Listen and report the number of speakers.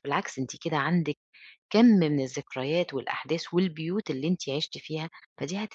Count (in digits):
1